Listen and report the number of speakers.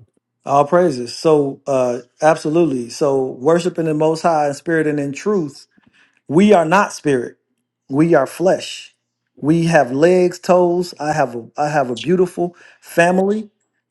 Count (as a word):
one